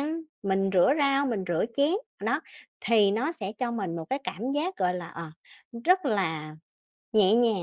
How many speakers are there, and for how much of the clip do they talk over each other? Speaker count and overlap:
1, no overlap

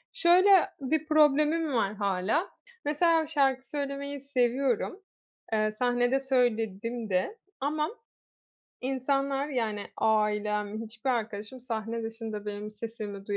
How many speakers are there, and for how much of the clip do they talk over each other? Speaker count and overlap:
1, no overlap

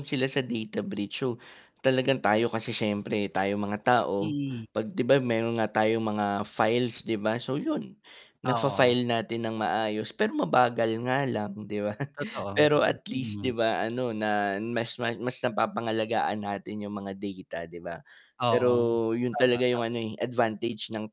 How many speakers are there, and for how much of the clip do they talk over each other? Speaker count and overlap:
2, about 9%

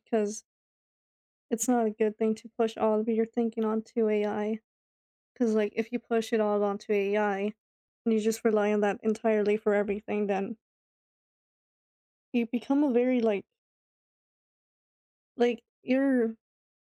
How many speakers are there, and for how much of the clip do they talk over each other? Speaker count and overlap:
1, no overlap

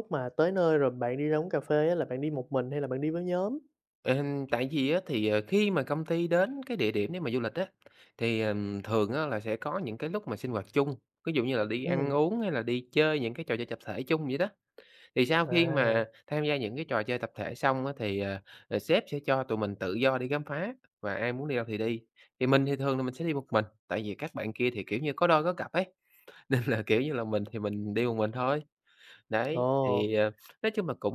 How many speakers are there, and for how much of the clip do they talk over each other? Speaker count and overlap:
2, about 4%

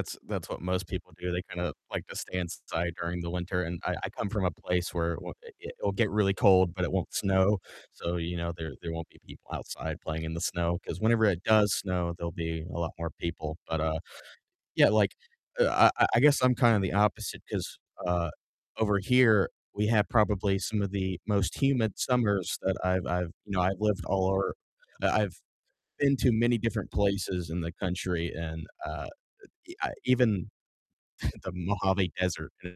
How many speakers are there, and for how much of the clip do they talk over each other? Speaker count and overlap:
1, no overlap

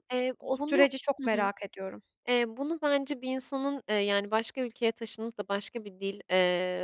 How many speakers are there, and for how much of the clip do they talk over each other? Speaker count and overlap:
2, about 11%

